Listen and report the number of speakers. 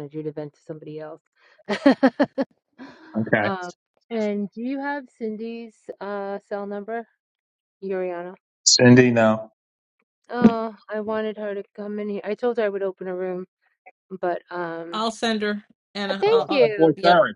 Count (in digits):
3